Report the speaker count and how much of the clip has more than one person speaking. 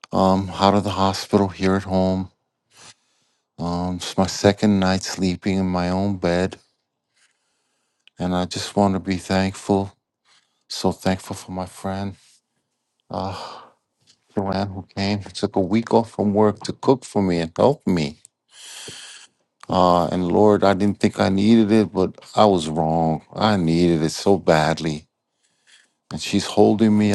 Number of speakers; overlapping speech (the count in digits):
1, no overlap